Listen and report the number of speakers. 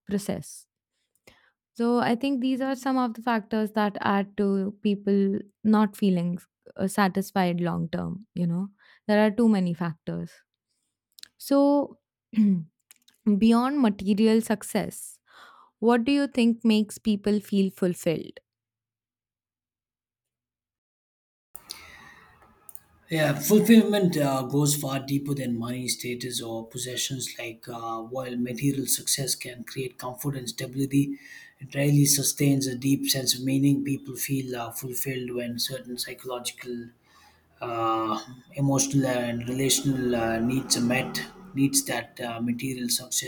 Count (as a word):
two